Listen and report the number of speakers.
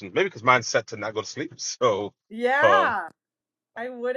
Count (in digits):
2